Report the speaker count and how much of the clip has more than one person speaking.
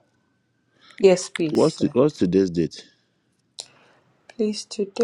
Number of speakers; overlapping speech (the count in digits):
2, about 8%